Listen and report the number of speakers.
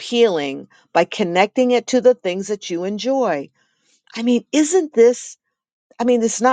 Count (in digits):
1